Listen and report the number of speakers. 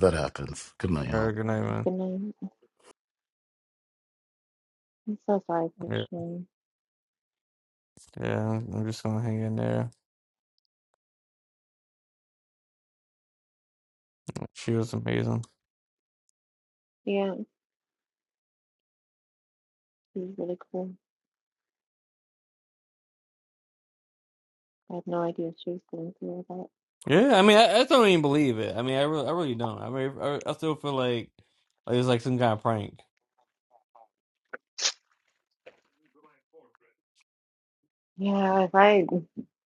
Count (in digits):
3